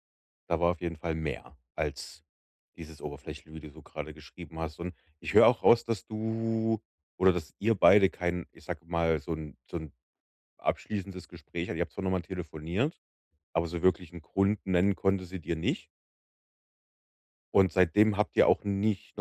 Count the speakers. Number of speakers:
one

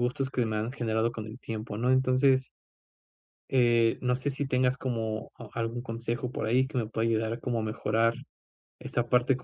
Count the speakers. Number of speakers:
one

